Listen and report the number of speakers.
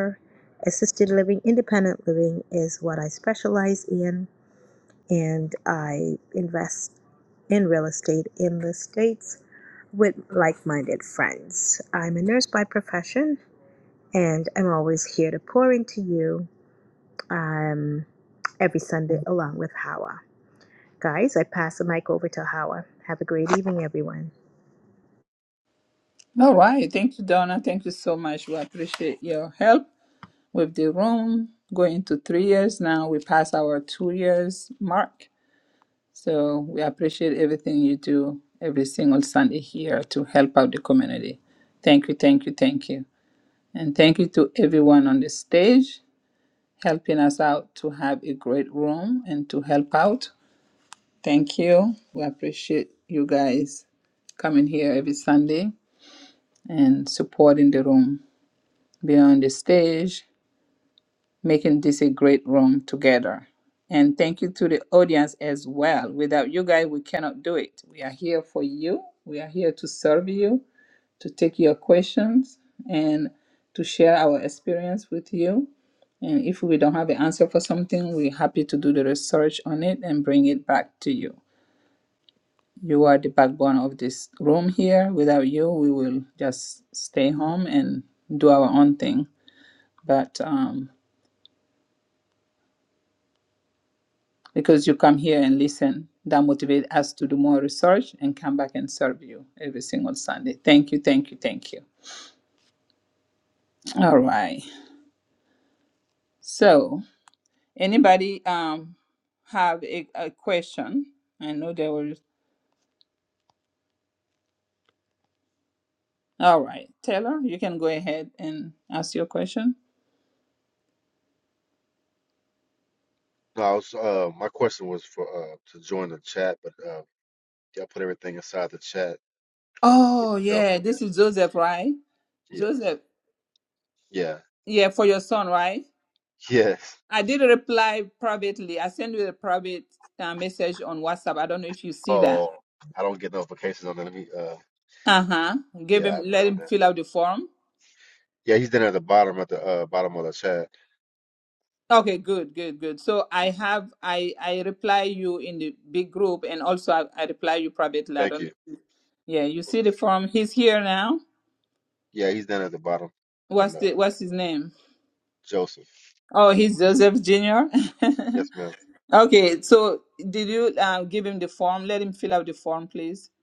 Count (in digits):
3